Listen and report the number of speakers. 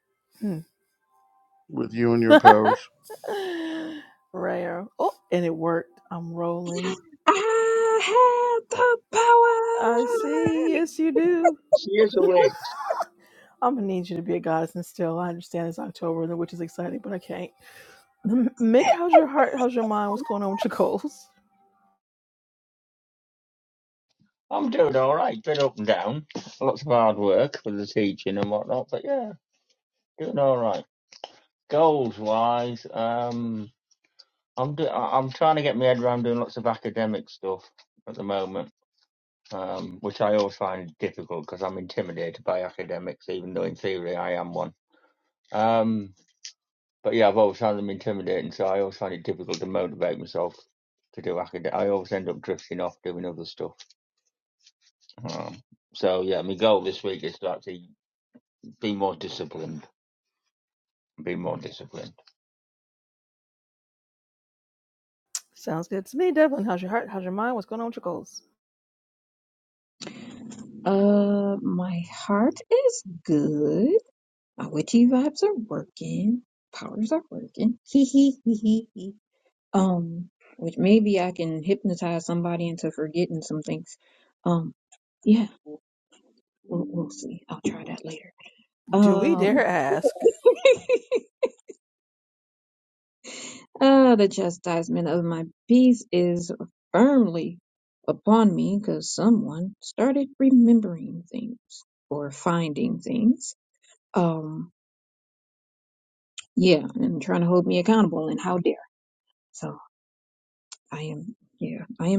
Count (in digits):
4